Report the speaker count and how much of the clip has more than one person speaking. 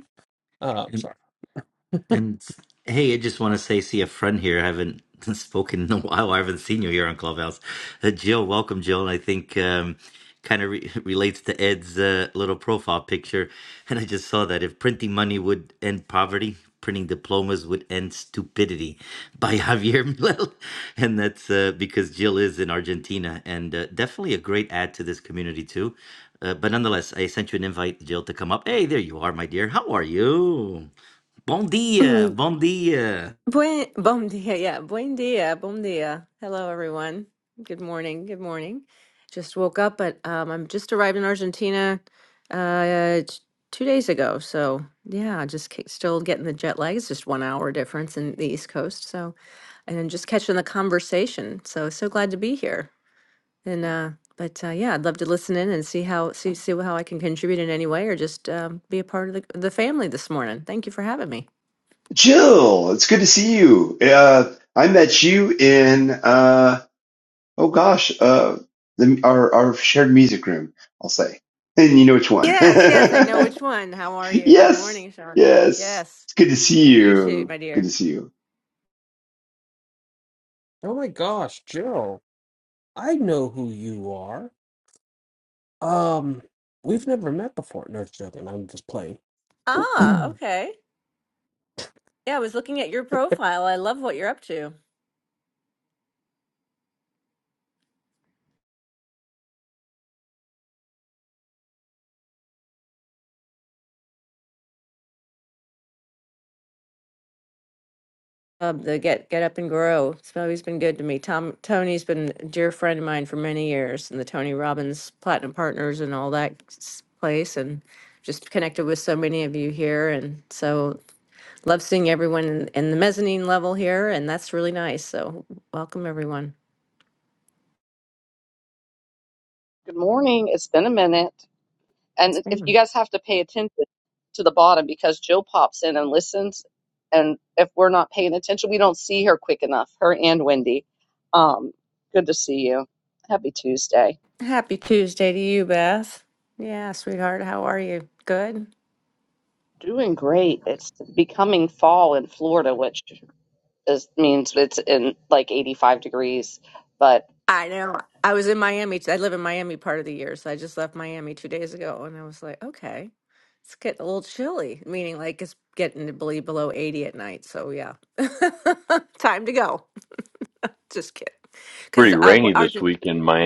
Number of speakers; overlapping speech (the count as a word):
six, about 2%